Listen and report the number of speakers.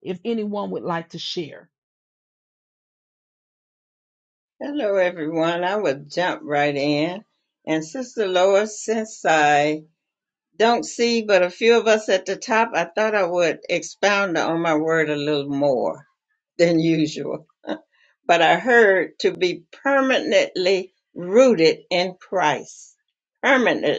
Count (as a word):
two